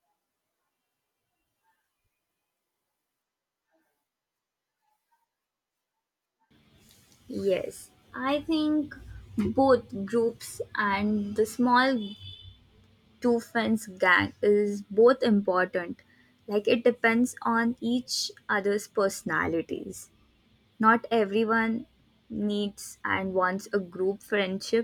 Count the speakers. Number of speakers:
1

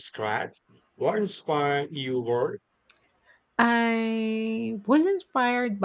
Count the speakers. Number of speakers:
2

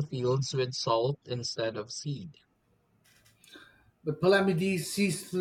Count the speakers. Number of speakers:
2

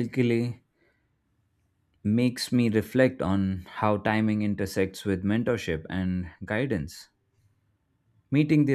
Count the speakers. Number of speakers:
1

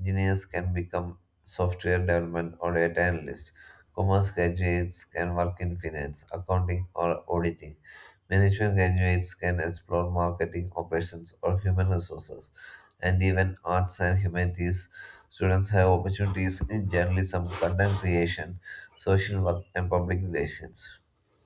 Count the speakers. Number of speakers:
1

